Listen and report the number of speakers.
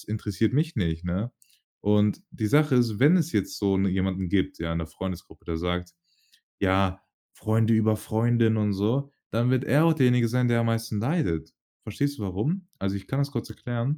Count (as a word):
one